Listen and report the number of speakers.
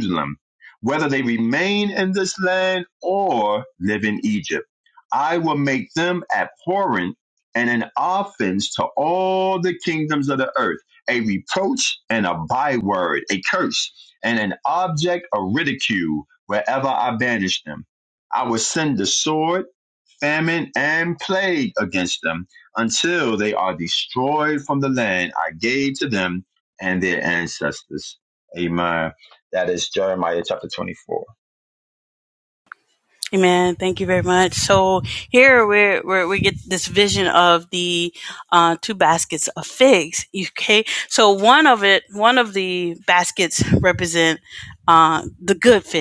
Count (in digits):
2